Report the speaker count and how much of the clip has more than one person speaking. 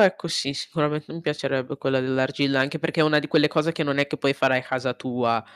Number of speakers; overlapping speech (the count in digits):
1, no overlap